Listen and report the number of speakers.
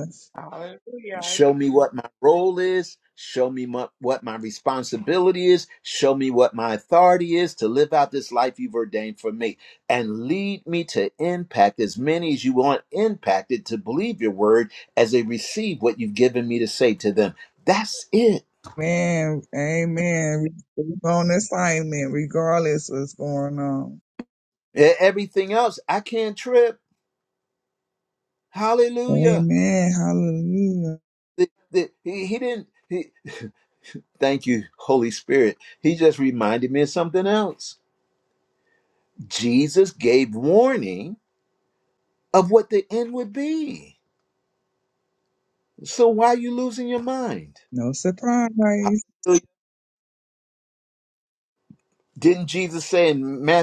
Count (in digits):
3